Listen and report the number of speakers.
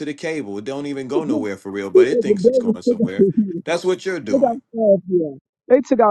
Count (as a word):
two